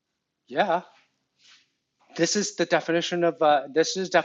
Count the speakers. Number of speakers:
1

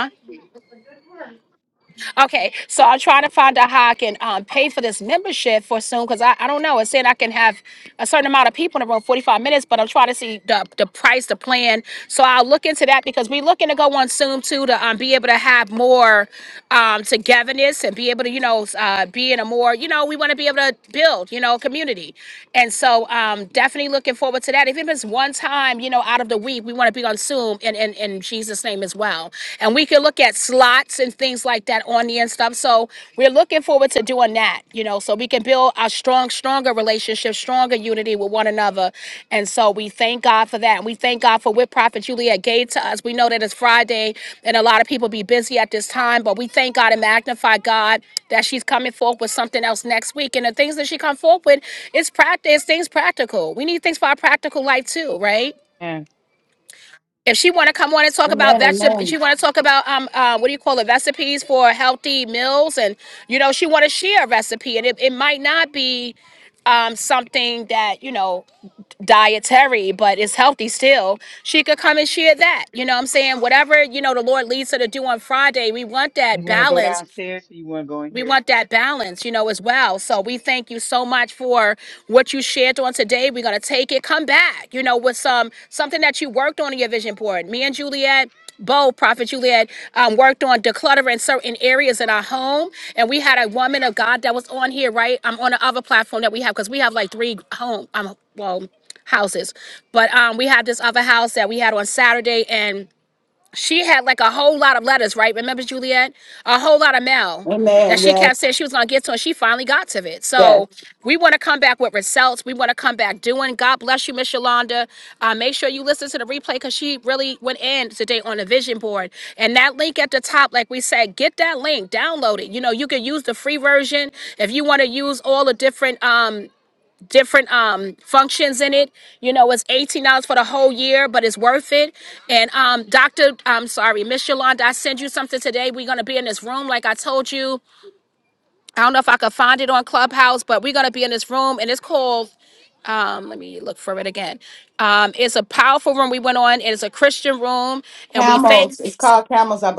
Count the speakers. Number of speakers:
3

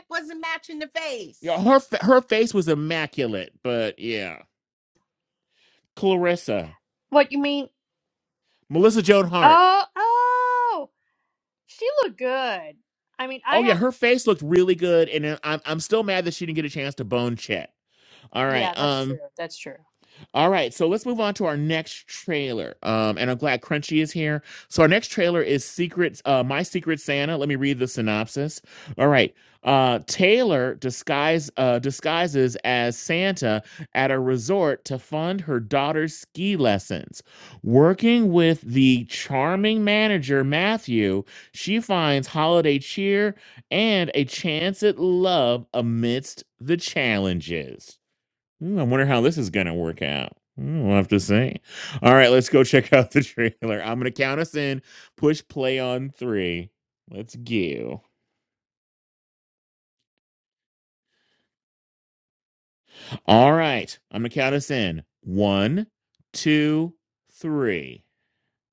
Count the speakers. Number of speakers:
3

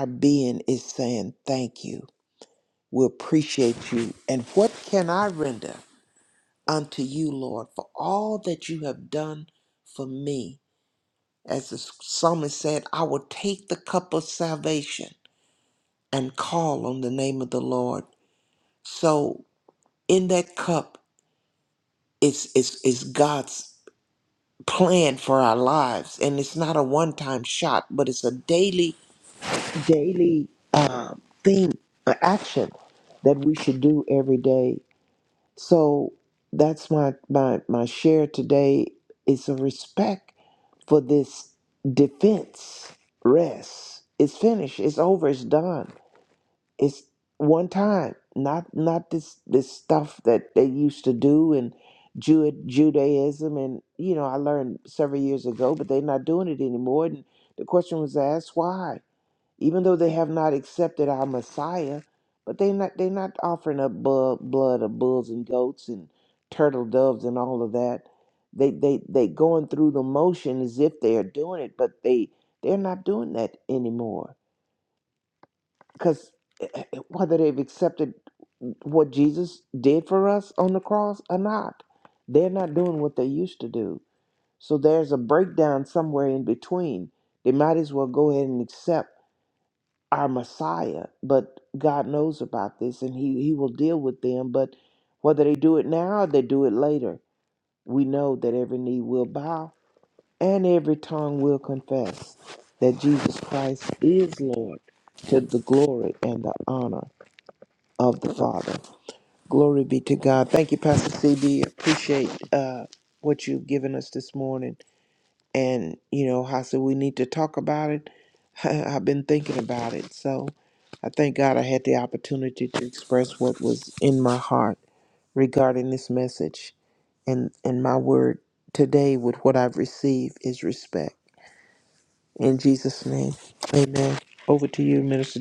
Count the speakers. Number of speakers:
1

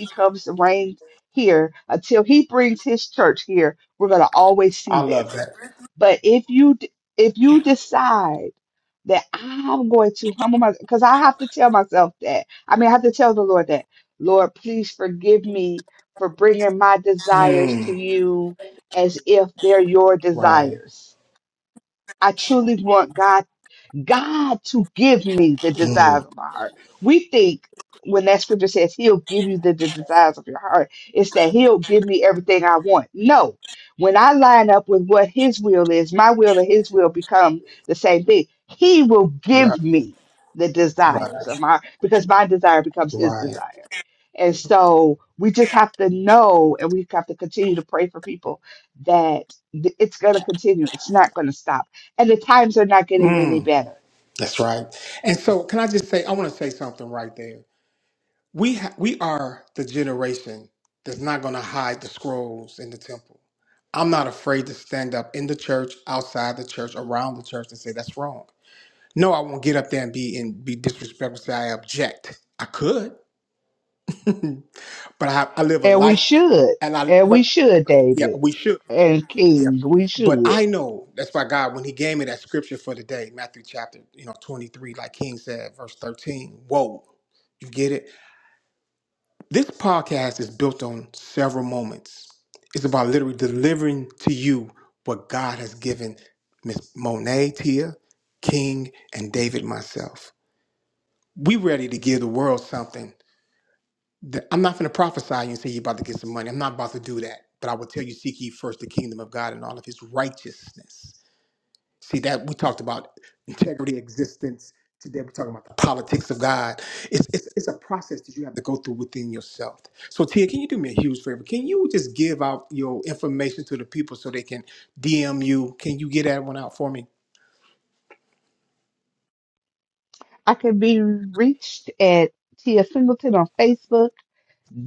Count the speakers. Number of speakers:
2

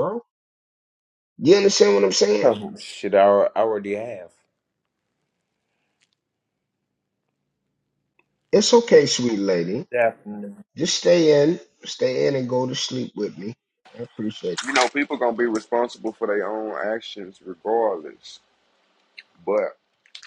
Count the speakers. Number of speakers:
3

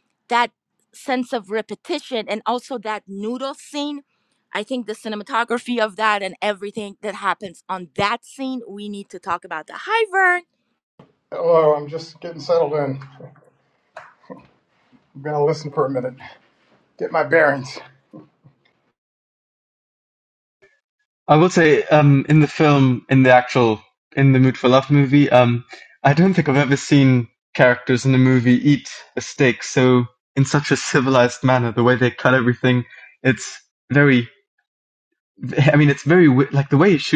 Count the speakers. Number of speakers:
3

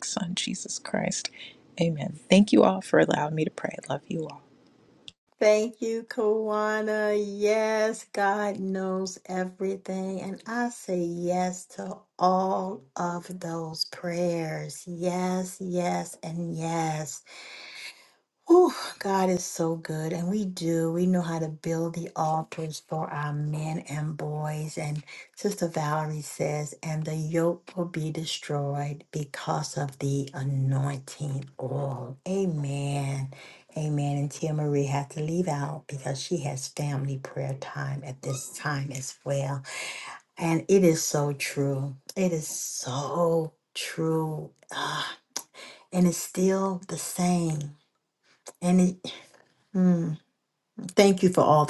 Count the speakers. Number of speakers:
2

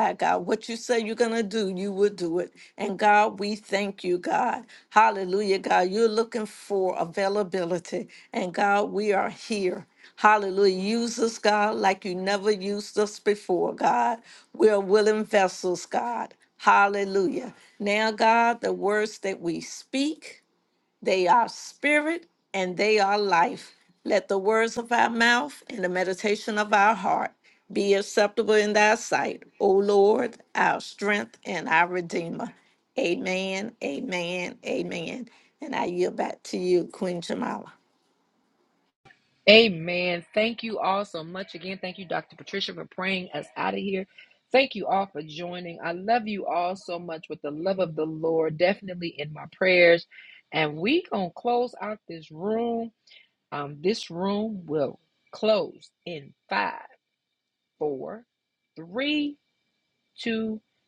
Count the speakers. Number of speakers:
2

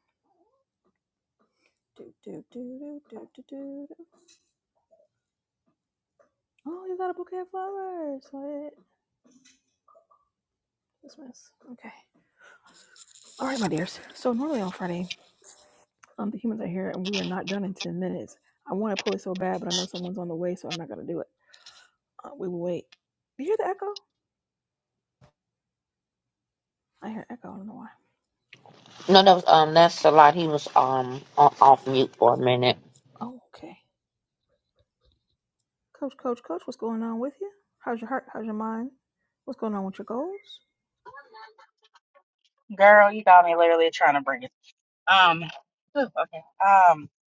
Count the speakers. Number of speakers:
3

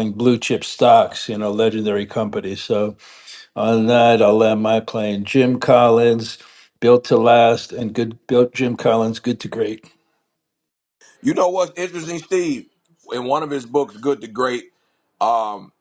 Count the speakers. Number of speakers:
2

